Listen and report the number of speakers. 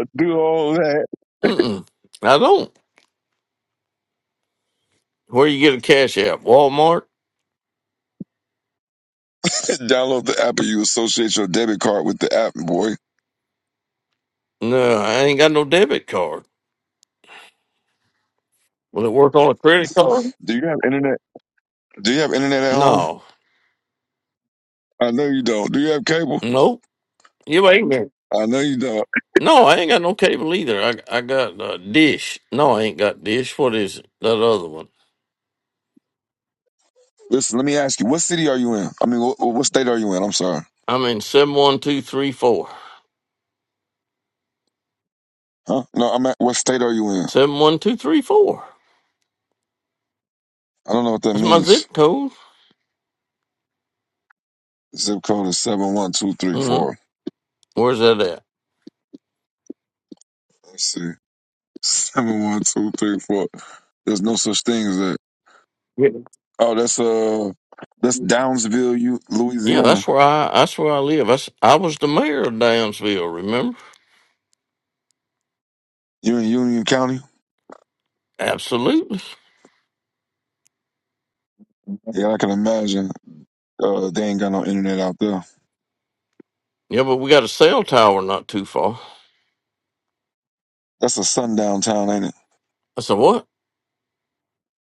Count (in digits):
2